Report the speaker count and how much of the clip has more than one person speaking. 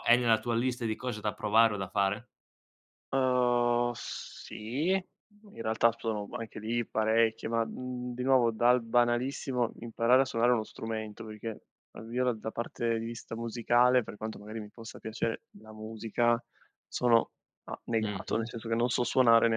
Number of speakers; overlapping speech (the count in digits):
2, about 2%